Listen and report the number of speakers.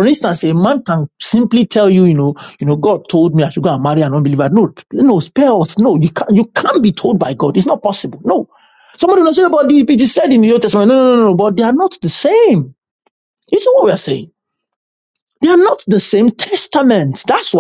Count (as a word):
one